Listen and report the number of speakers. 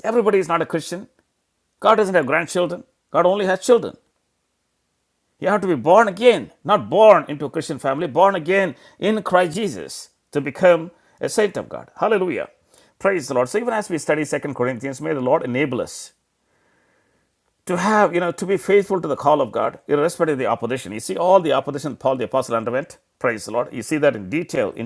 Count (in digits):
1